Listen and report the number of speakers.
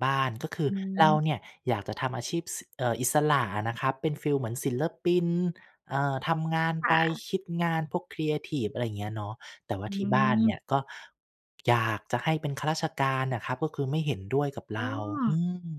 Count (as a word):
two